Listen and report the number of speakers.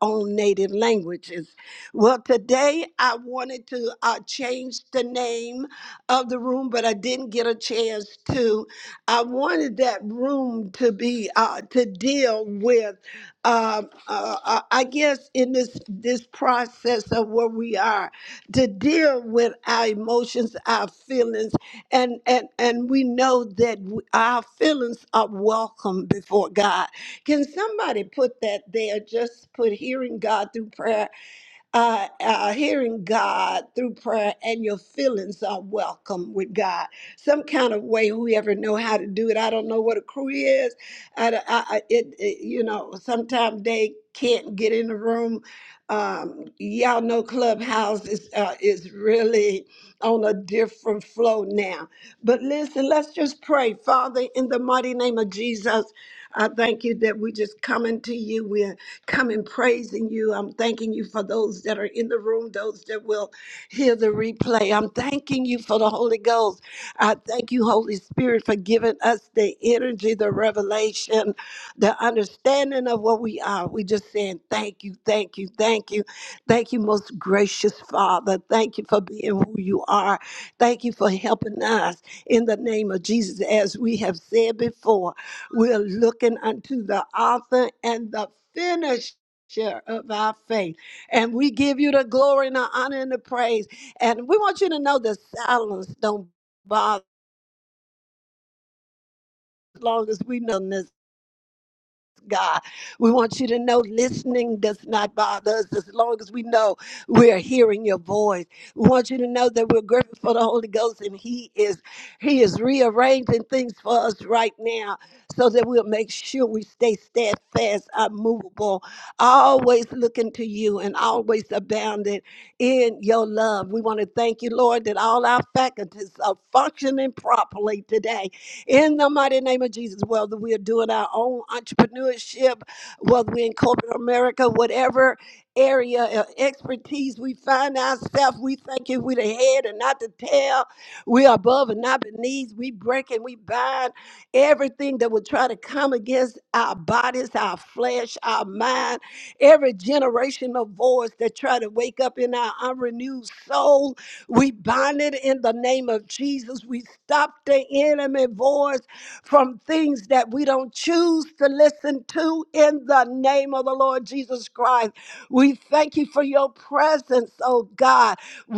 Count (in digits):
1